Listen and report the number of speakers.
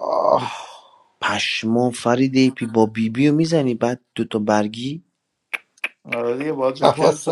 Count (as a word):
three